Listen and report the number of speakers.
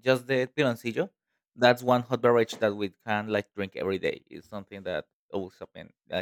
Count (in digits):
1